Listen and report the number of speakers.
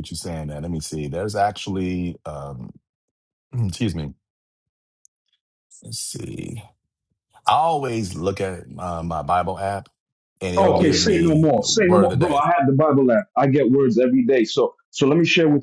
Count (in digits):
2